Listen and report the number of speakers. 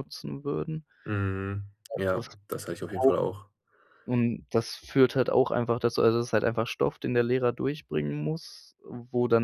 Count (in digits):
2